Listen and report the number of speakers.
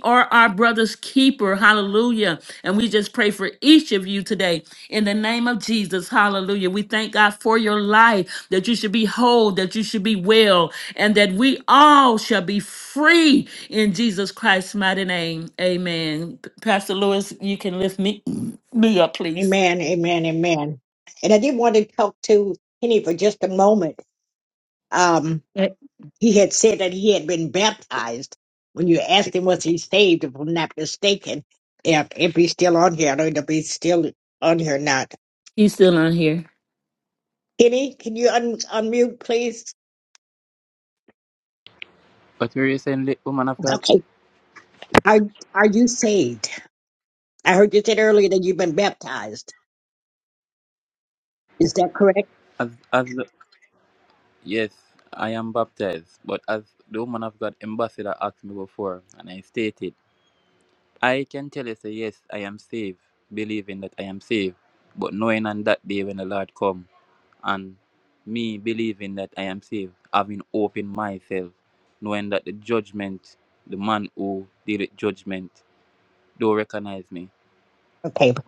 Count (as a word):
three